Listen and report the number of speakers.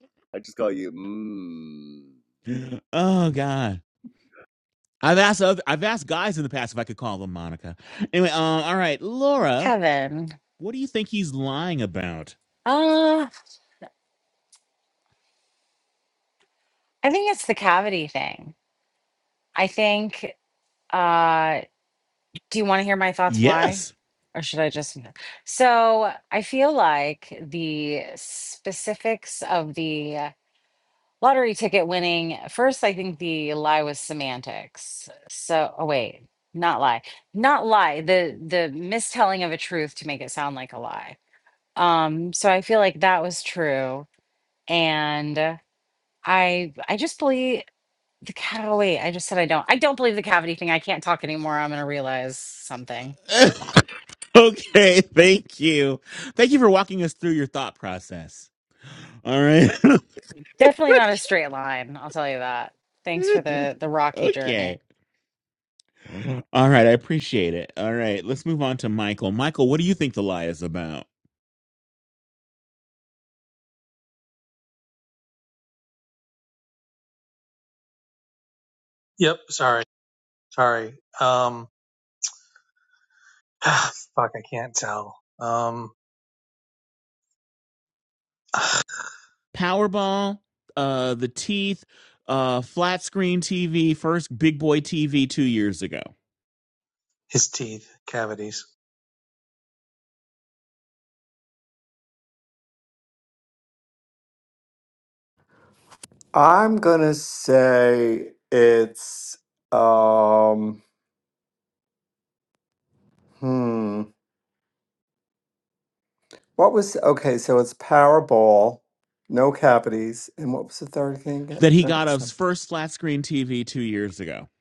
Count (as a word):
five